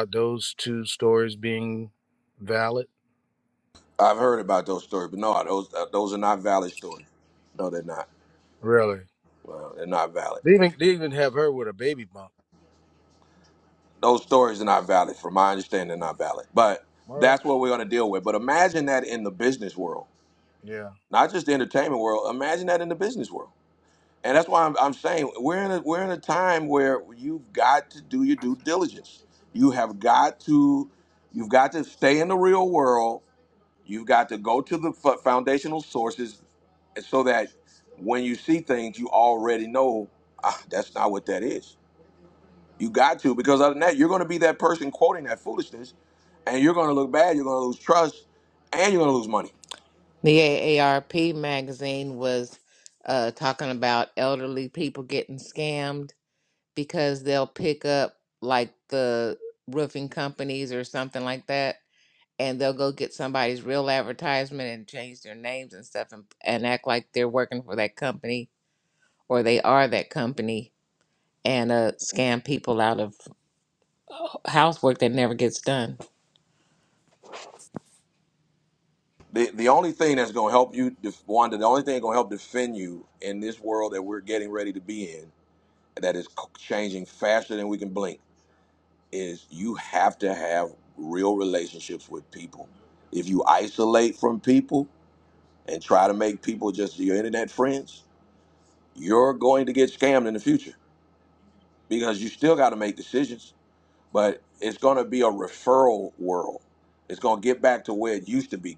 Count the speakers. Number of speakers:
three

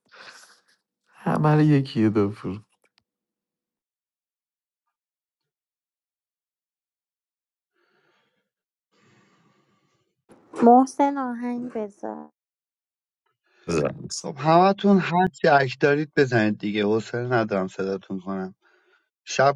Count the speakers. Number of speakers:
three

